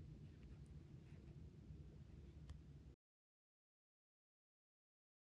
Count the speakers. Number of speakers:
0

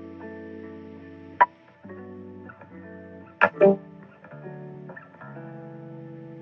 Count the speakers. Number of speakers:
0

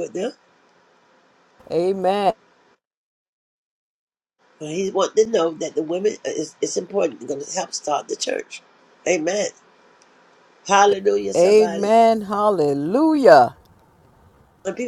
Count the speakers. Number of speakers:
2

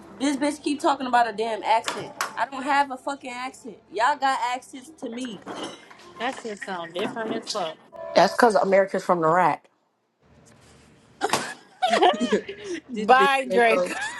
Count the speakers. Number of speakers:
3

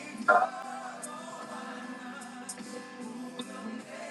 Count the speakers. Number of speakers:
0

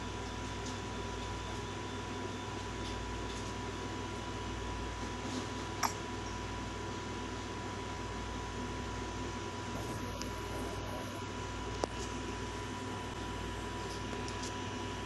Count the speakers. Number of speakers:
0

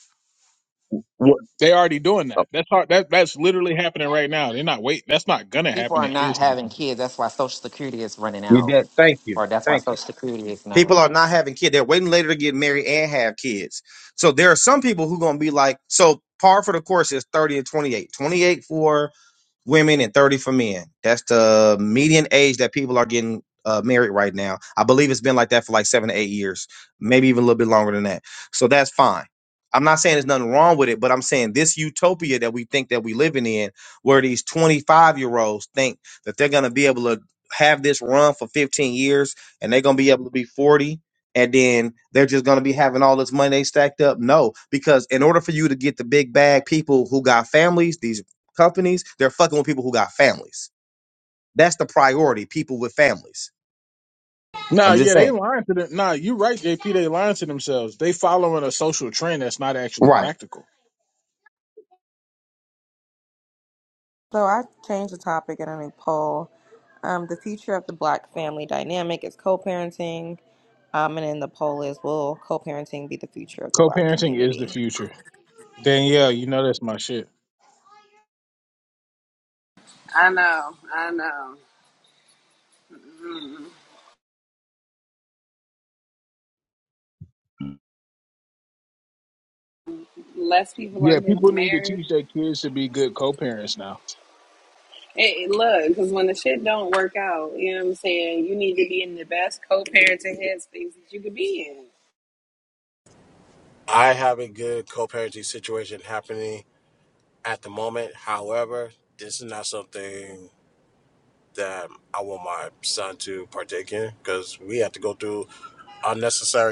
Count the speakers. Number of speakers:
6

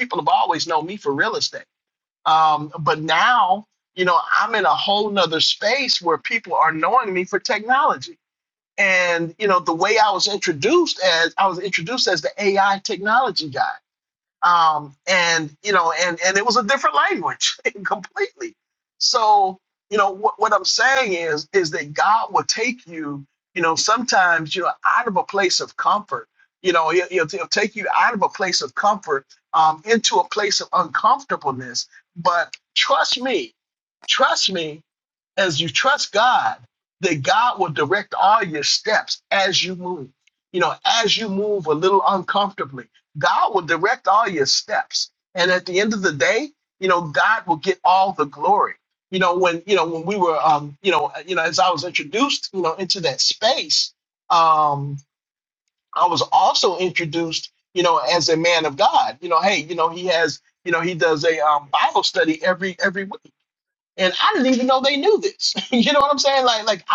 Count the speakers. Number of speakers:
1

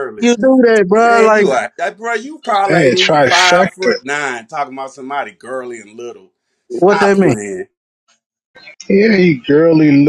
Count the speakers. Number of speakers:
3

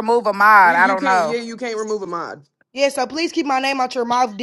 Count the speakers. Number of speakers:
3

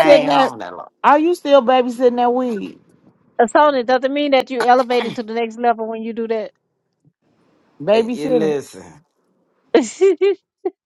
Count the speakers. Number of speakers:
3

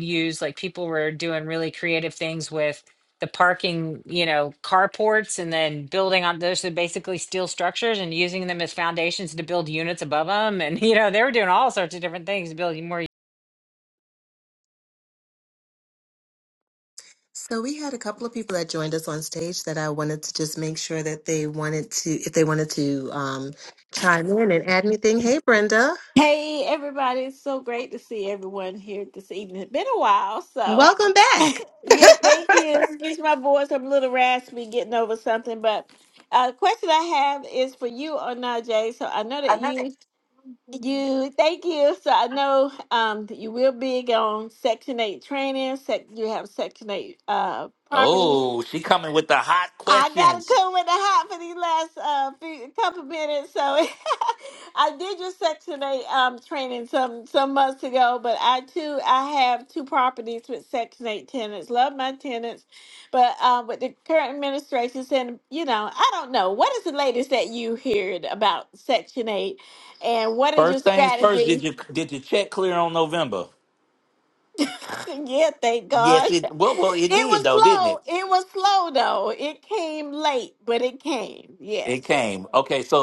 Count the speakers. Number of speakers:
4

